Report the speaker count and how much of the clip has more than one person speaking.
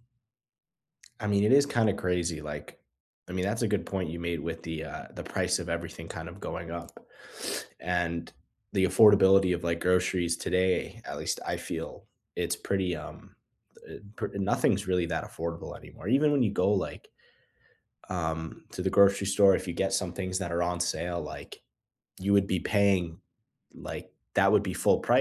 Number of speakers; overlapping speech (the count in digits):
1, no overlap